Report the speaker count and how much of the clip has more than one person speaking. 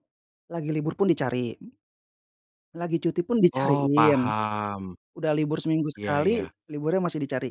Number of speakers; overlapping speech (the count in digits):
2, about 18%